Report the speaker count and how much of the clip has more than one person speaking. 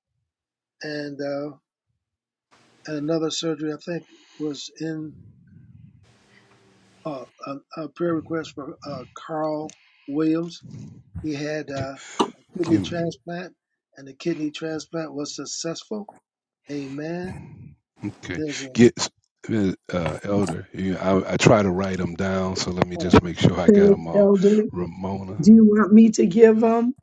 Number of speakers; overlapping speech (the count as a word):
three, about 8%